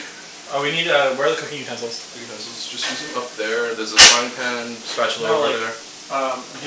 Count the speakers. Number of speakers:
two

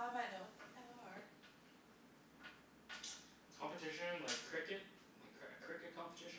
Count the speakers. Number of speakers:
two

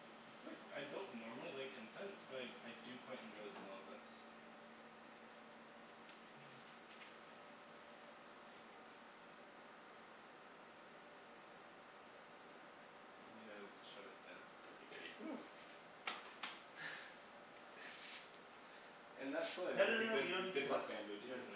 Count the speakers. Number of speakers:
two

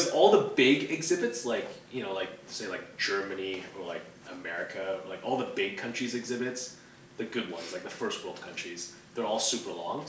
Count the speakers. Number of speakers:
one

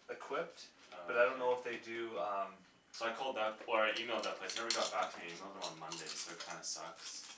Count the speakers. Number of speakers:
two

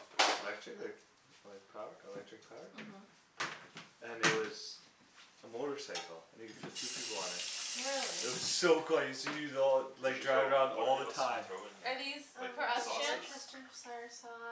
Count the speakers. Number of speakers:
four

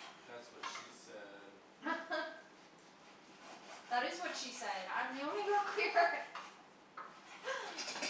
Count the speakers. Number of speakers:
two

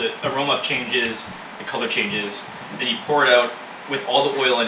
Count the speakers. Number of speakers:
one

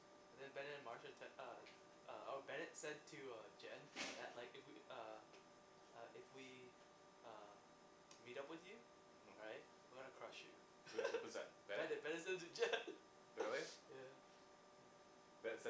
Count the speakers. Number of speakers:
two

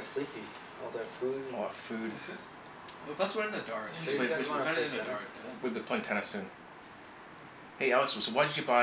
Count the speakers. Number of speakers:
three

